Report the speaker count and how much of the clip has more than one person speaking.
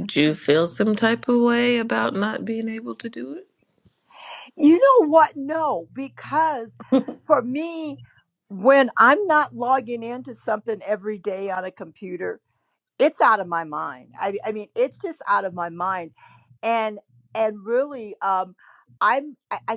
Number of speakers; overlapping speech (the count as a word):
two, no overlap